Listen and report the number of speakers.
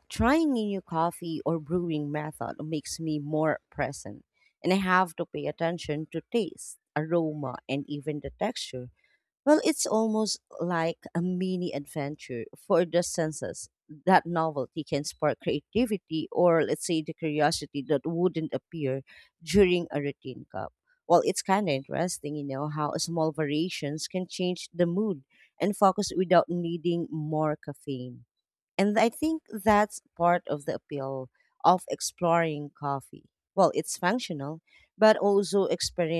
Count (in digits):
1